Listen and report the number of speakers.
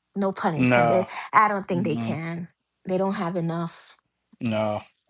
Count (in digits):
2